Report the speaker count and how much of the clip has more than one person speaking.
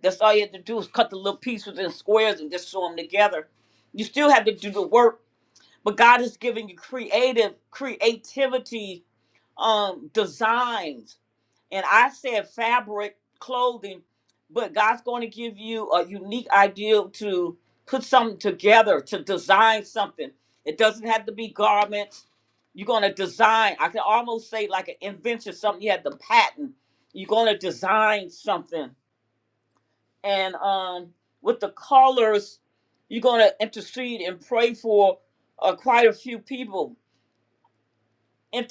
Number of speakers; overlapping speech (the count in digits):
1, no overlap